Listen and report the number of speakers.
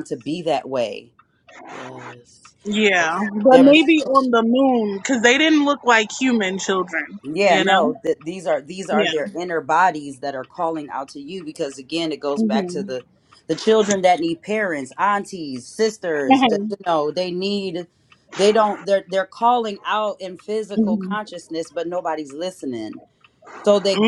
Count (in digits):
3